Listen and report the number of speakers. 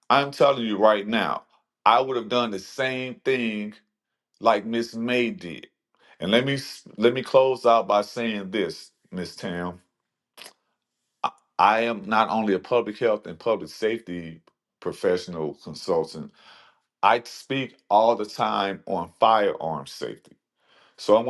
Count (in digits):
1